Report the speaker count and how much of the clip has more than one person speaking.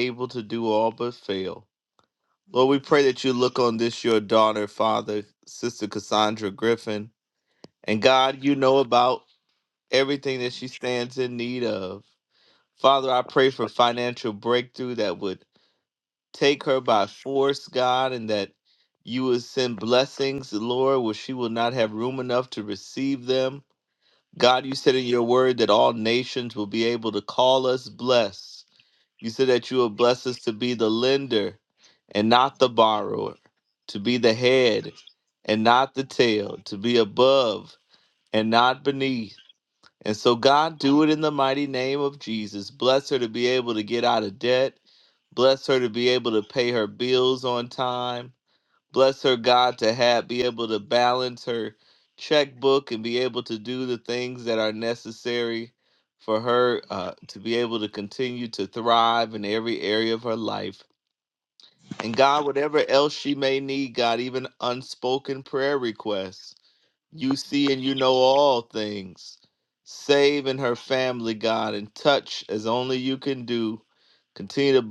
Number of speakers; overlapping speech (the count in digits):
1, no overlap